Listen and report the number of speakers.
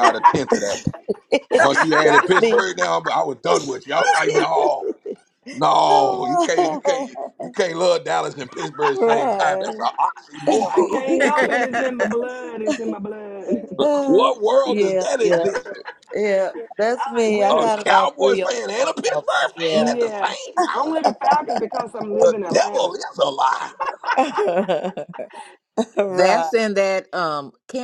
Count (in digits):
4